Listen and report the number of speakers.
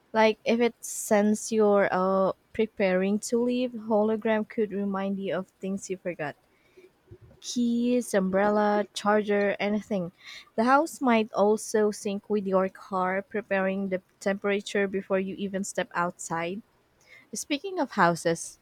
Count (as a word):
one